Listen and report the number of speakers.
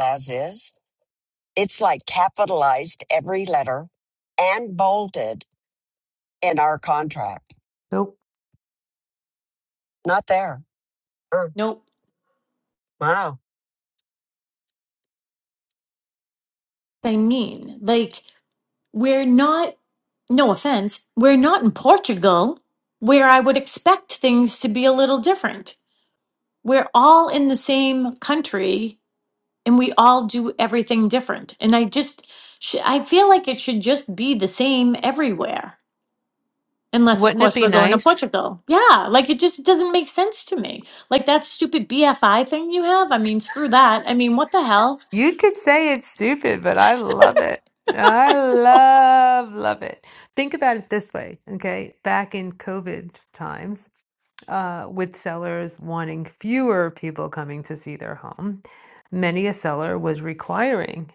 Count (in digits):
3